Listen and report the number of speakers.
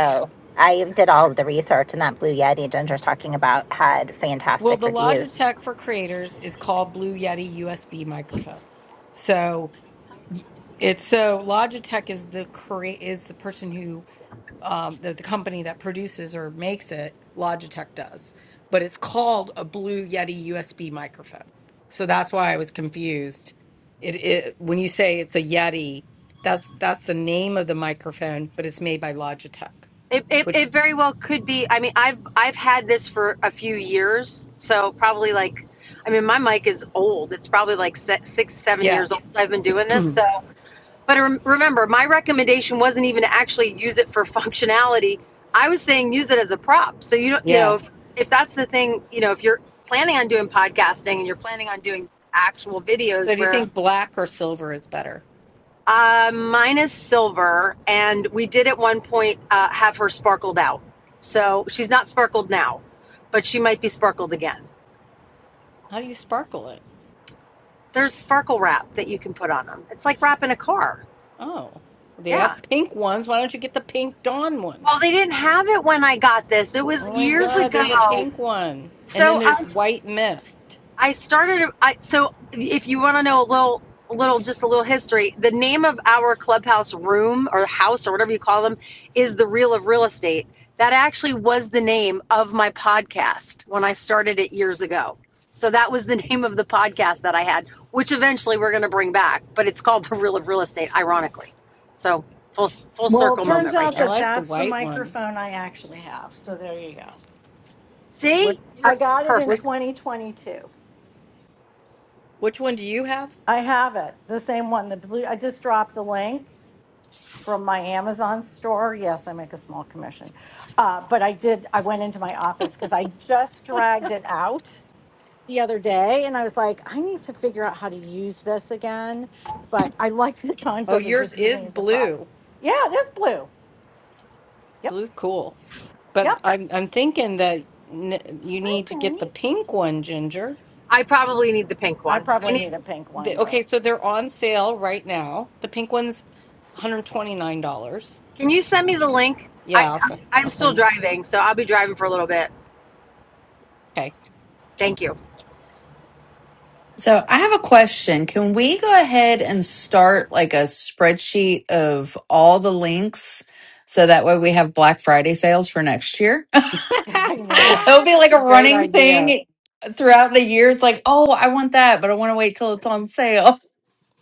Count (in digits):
5